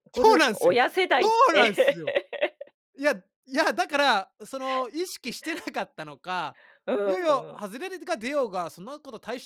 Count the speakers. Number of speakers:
2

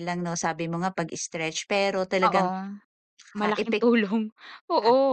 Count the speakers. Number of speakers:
2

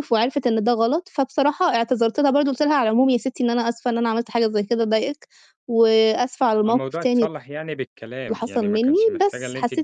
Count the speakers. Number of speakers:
2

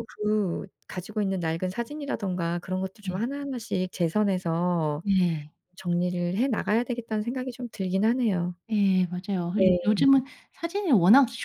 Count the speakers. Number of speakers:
2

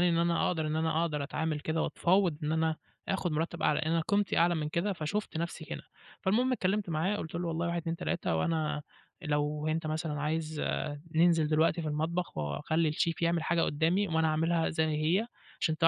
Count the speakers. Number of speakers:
1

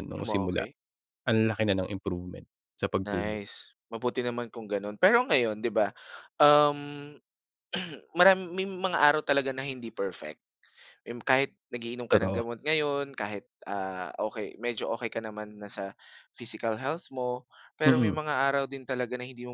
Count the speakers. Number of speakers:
2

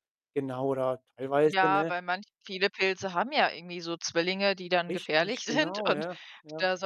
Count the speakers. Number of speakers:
2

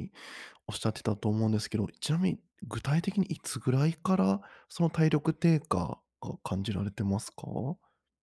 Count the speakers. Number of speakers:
1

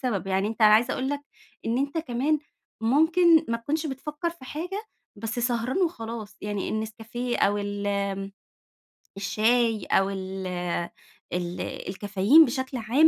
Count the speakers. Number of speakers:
1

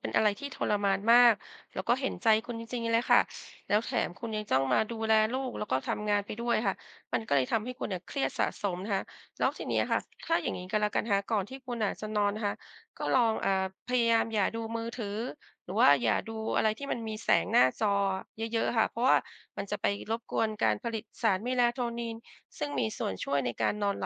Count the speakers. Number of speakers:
1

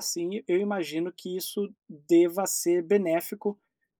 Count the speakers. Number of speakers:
1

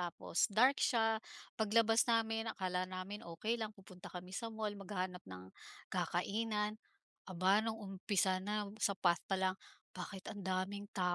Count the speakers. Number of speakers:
1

